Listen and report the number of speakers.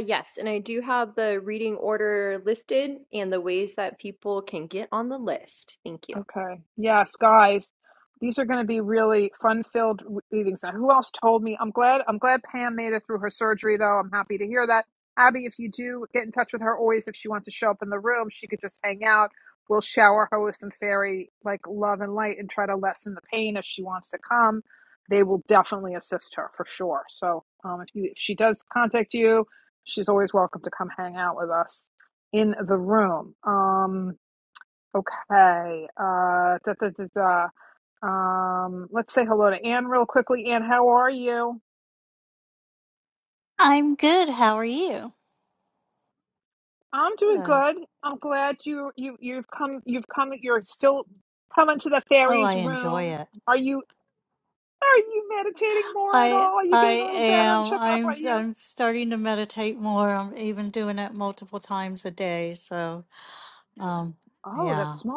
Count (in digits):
3